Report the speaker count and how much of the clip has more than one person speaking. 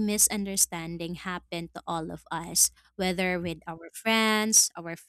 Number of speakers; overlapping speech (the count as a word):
one, no overlap